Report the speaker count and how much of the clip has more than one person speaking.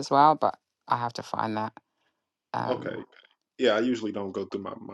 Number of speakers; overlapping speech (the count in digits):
2, about 6%